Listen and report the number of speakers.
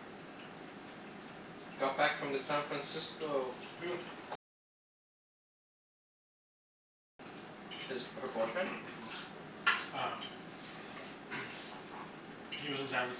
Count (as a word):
two